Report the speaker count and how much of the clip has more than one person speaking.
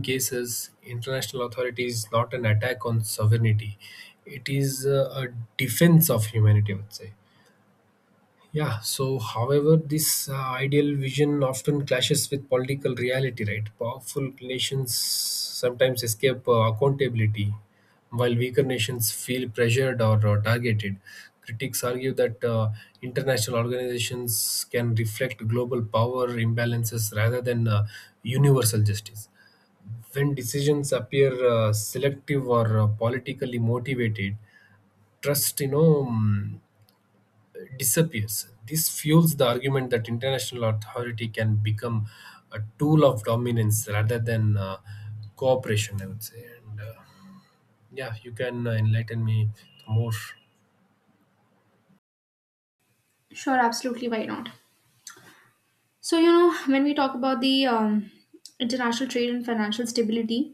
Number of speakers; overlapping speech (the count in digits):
2, no overlap